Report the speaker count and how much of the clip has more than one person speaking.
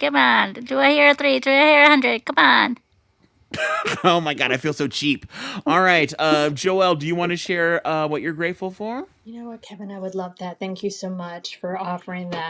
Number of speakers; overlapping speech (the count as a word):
three, no overlap